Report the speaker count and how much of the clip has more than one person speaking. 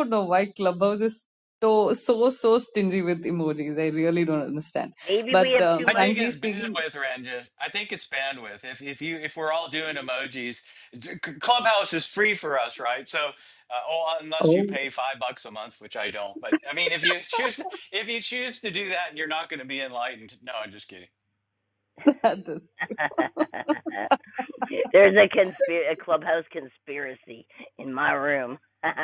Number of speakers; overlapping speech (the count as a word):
three, about 6%